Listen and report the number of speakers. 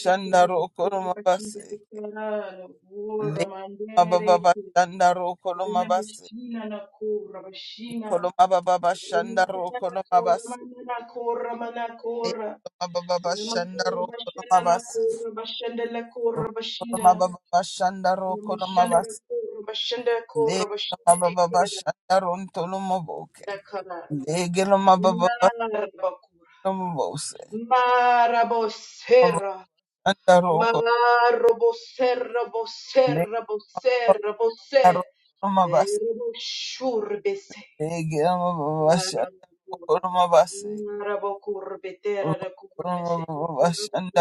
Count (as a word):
two